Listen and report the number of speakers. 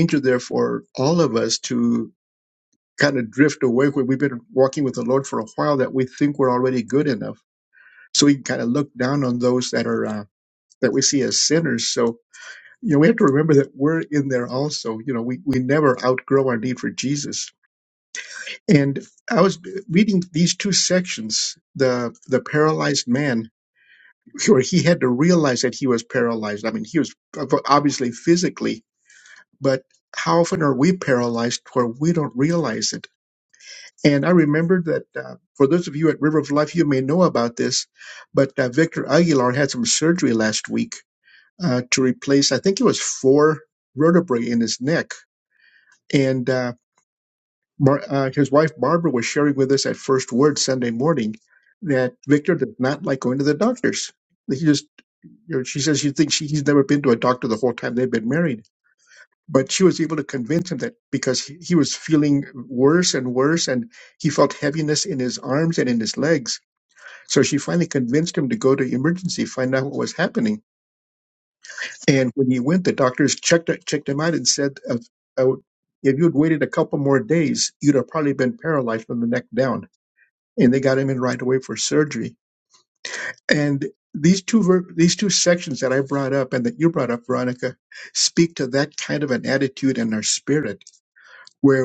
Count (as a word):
one